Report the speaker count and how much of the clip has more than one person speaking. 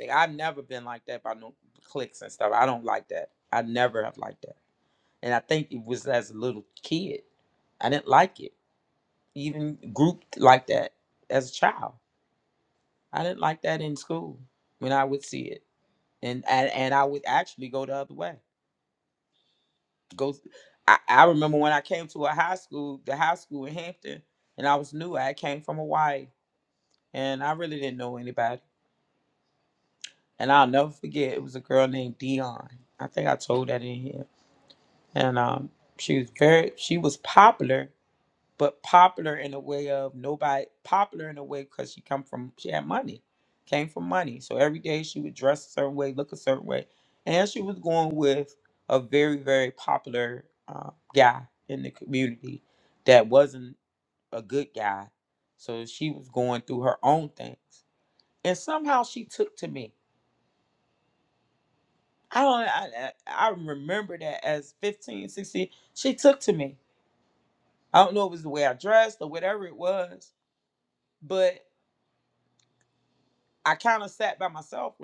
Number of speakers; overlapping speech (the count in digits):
1, no overlap